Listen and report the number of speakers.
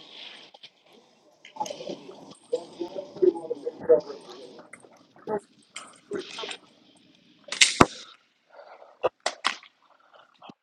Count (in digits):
0